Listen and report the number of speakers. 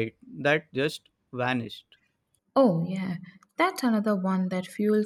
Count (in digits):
2